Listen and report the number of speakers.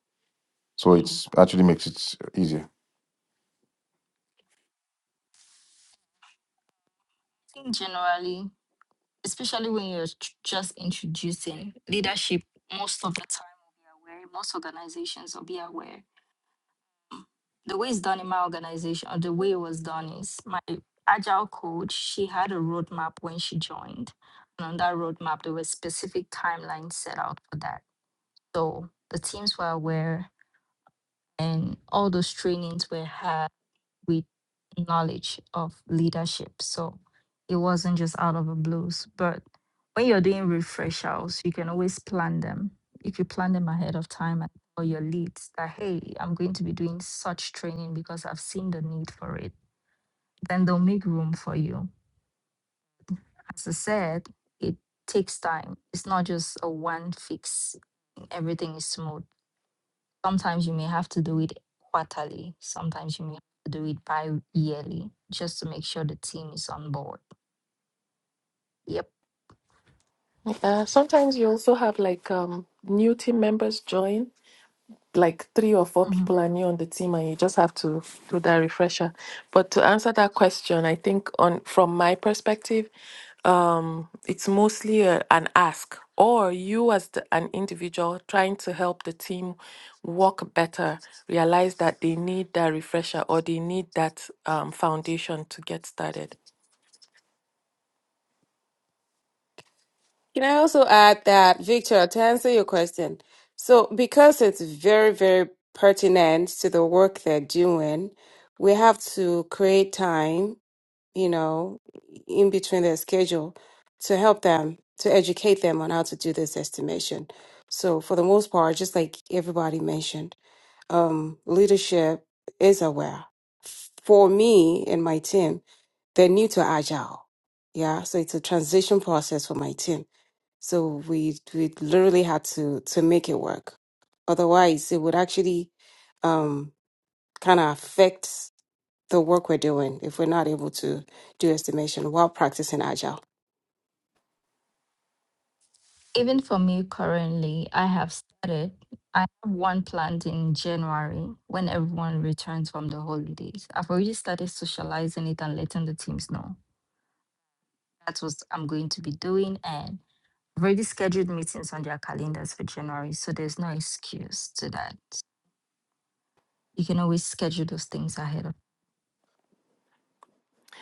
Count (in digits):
4